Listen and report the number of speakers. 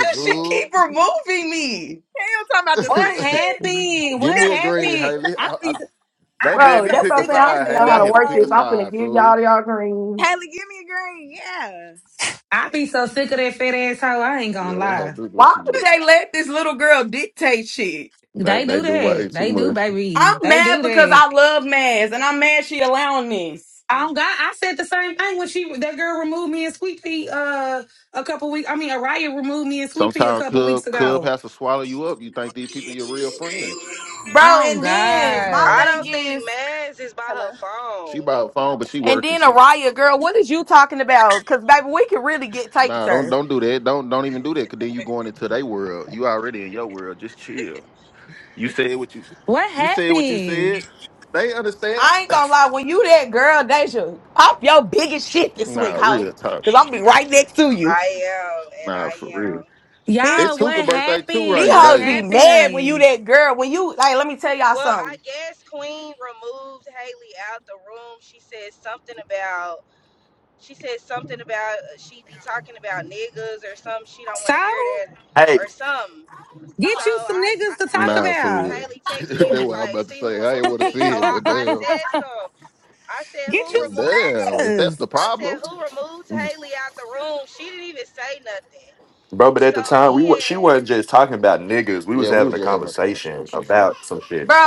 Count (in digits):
6